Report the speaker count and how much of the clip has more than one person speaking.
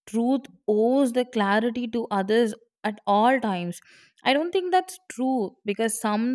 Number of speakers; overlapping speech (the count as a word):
one, no overlap